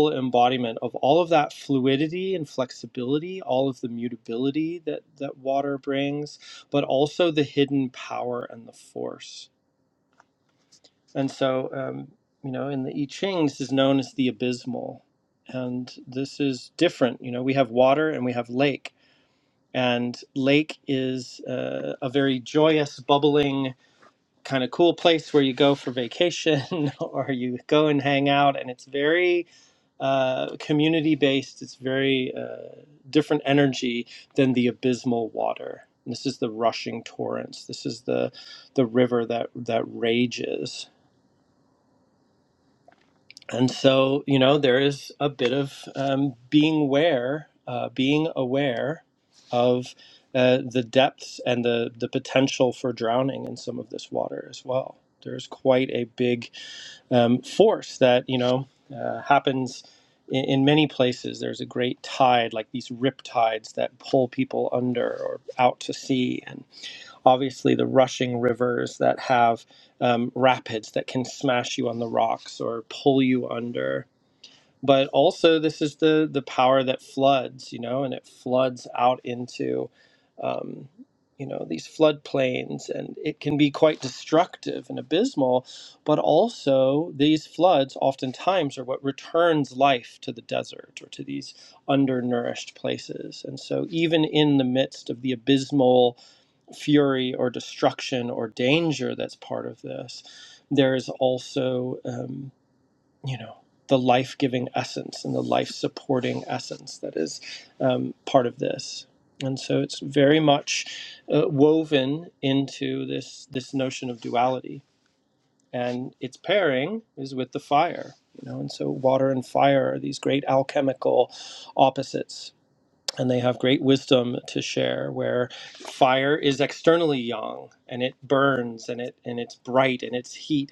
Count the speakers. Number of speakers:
one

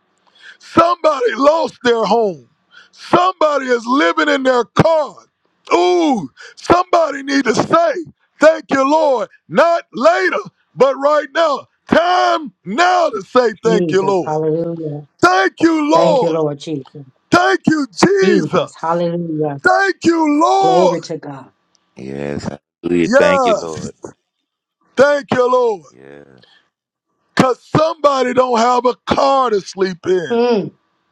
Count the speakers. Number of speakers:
three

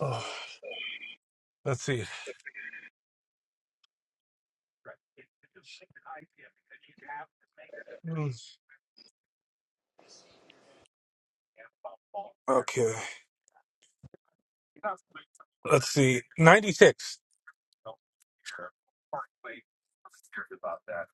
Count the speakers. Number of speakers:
one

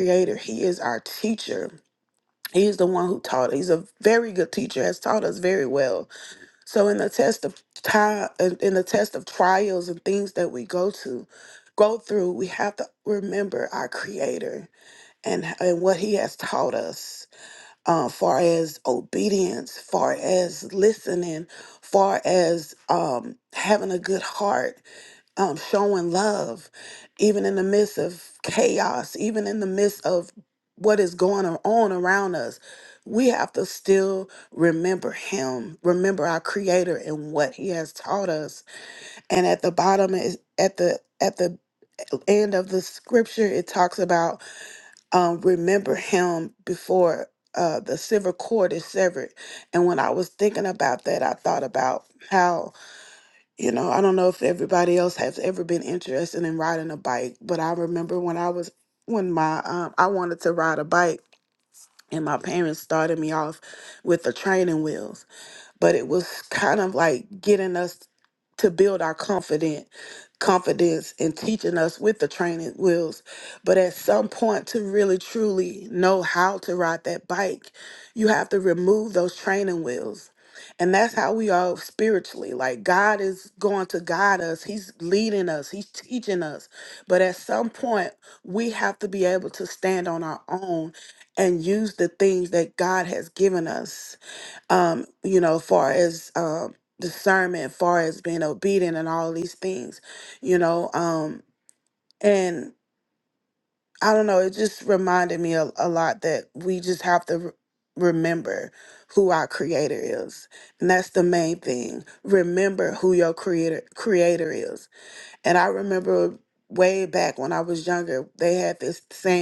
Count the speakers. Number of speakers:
one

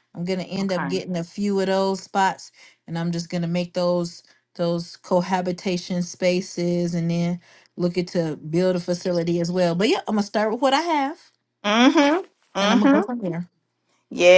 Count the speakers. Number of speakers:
two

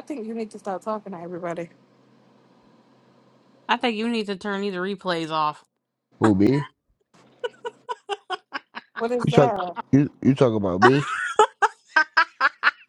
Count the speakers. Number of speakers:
three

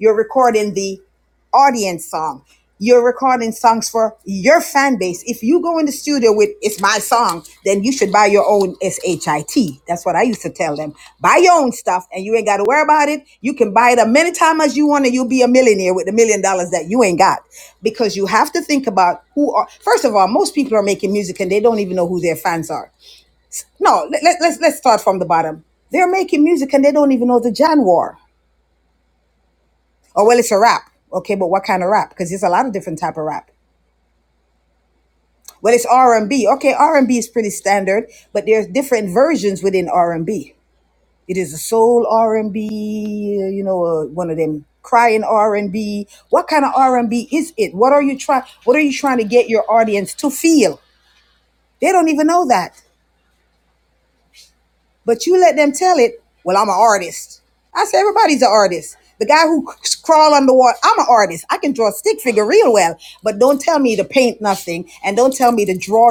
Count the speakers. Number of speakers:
one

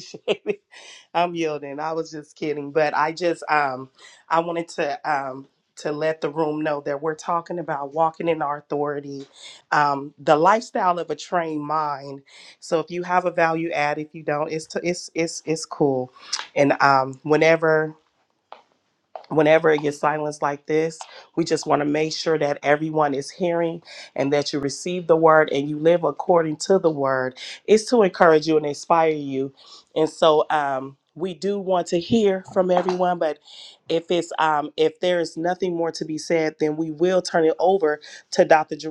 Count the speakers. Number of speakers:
one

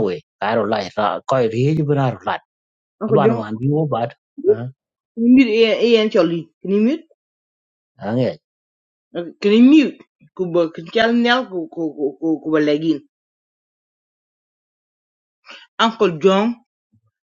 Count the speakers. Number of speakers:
two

